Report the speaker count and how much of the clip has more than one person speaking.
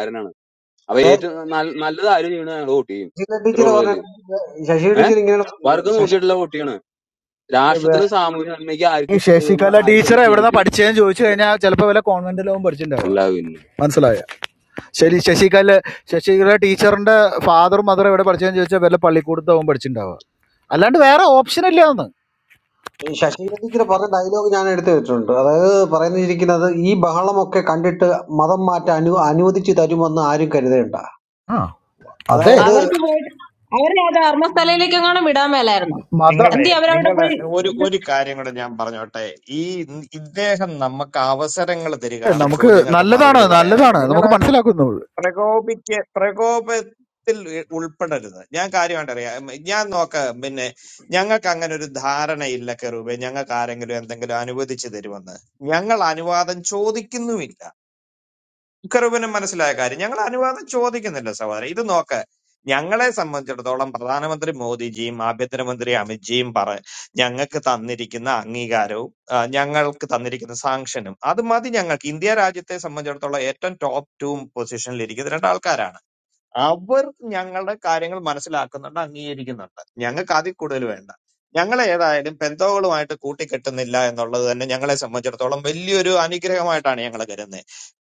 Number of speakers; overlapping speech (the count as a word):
five, about 8%